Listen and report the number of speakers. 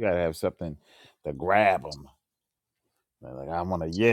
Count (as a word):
one